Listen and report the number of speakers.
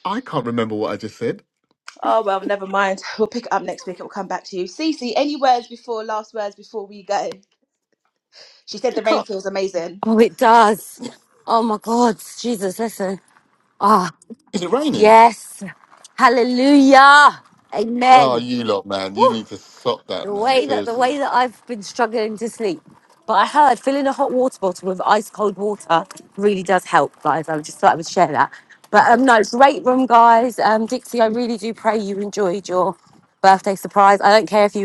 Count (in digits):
3